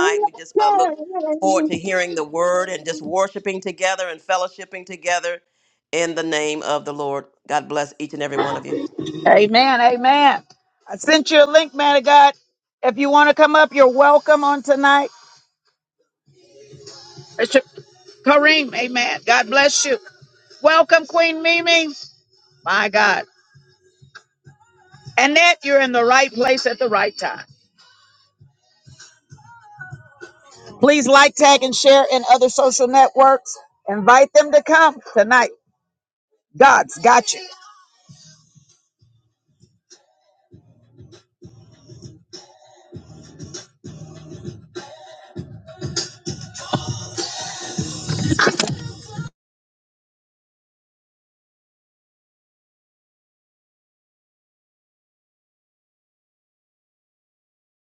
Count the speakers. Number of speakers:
2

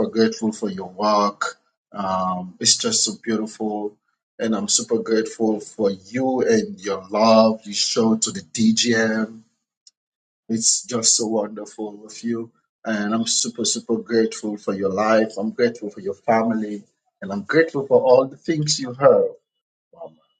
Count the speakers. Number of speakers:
1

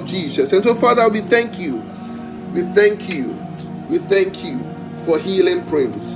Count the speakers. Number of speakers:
1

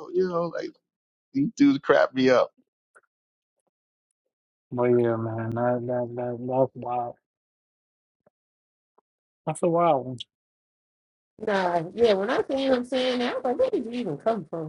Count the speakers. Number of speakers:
3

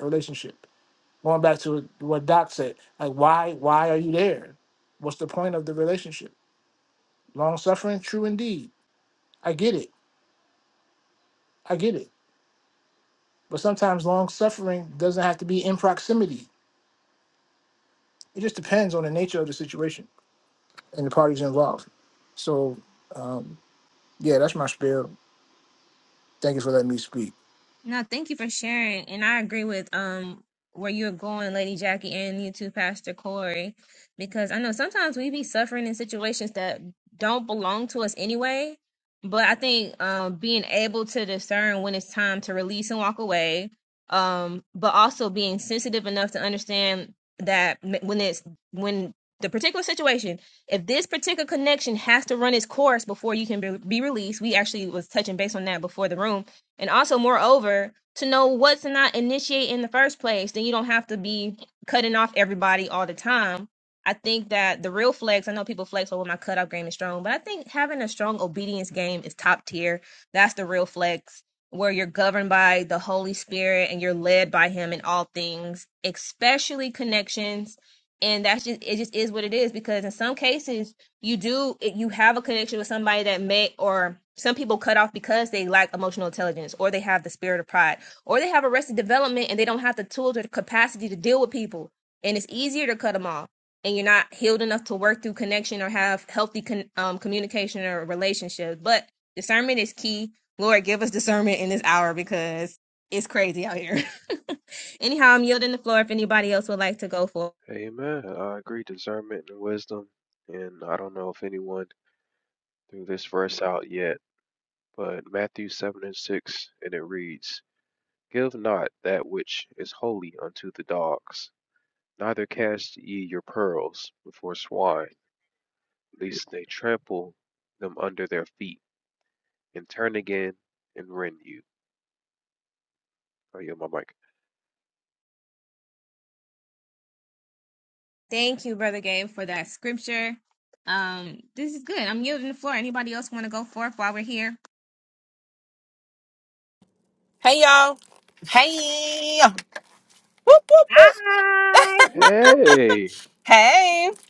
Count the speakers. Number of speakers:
4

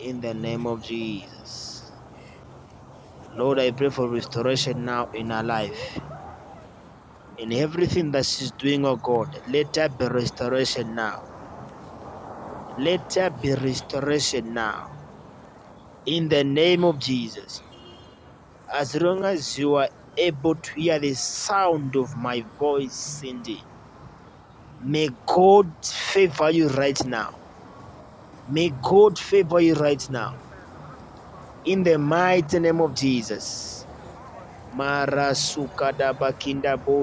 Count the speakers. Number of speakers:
1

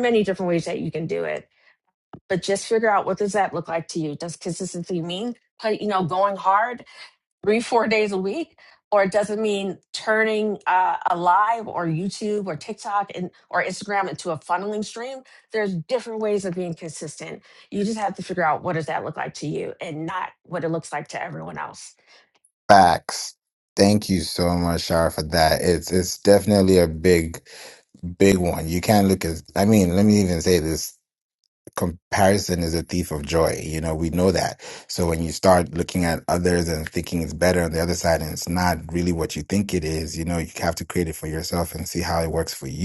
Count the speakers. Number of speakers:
2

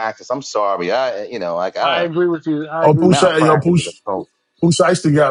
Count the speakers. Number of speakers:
3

